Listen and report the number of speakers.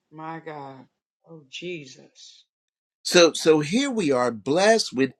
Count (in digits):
2